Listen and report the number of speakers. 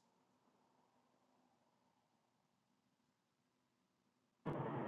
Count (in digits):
0